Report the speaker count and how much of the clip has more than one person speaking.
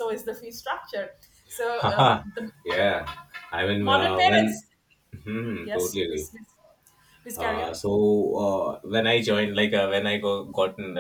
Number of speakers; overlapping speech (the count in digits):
2, about 24%